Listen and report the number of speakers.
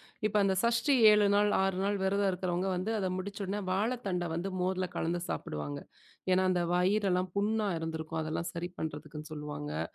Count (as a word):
one